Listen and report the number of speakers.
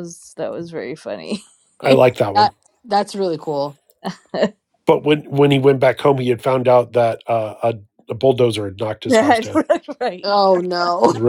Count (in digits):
3